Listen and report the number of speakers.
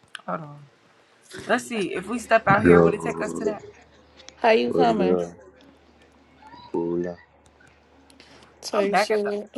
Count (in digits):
3